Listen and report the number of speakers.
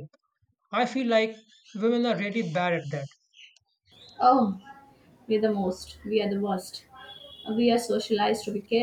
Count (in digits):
2